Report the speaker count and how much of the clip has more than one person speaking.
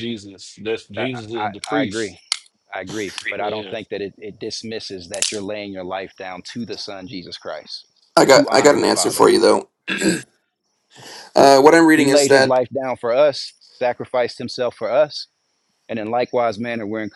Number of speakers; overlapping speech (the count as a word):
three, about 18%